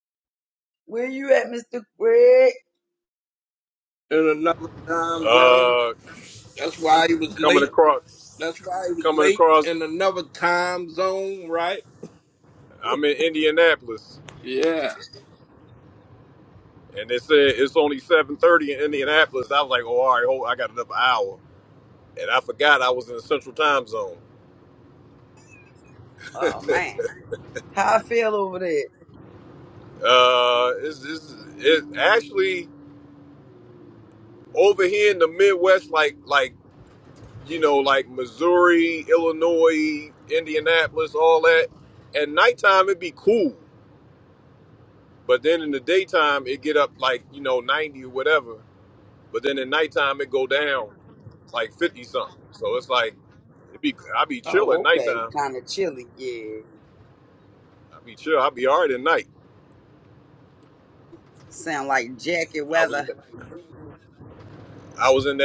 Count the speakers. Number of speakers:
3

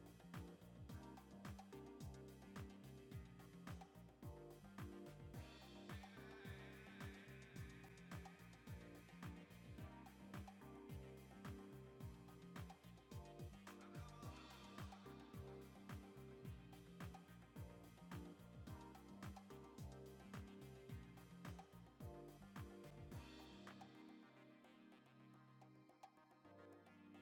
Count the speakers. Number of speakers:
0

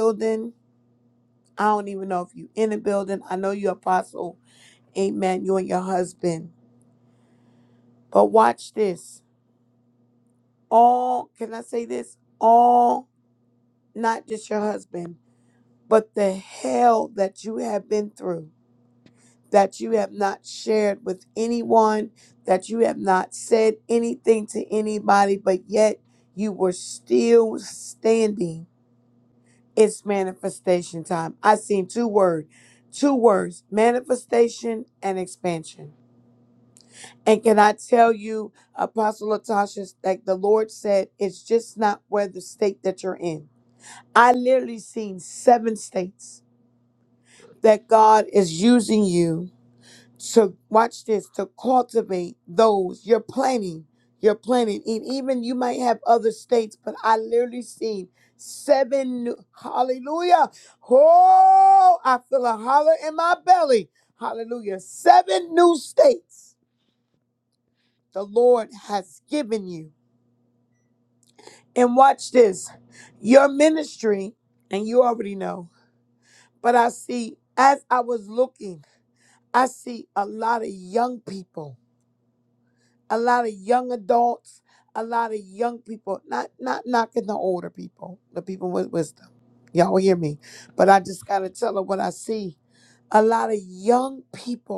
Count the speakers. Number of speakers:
1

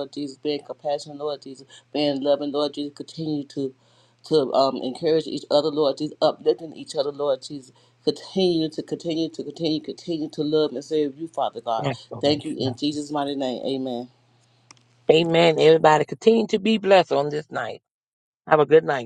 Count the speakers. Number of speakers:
2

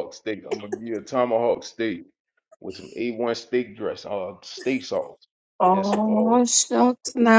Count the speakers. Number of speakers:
2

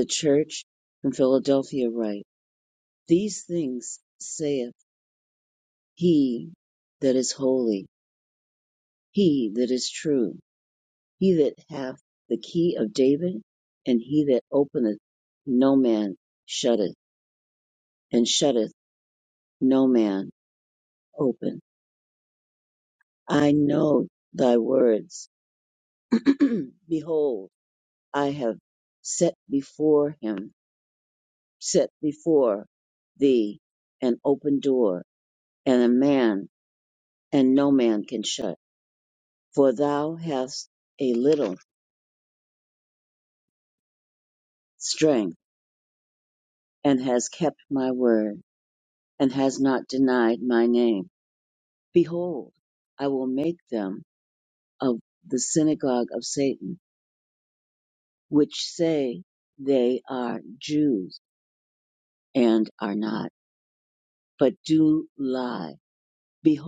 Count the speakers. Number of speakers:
1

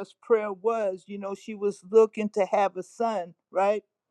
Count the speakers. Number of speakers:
1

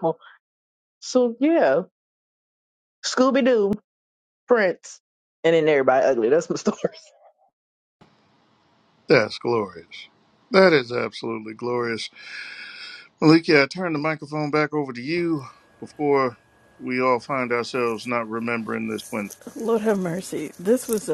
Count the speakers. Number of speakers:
3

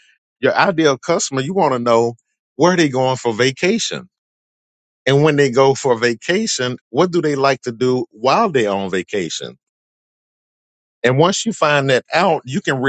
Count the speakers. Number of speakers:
1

